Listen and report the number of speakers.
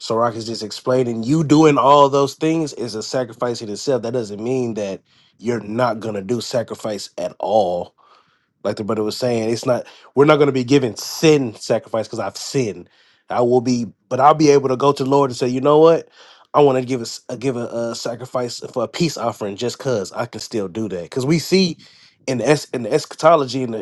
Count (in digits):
1